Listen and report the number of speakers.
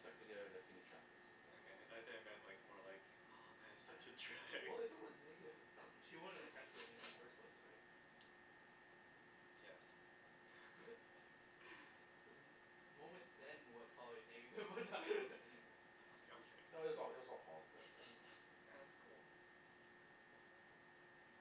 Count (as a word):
three